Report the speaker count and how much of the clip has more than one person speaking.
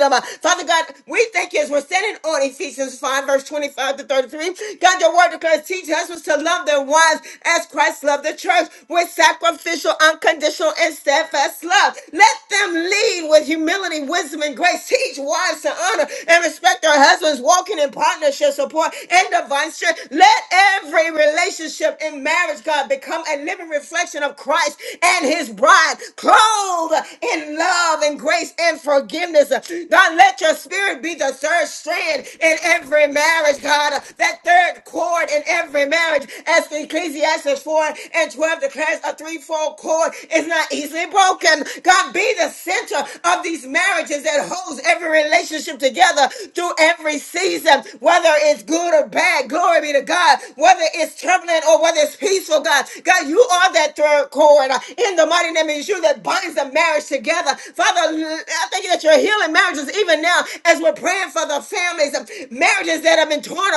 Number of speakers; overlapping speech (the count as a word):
one, no overlap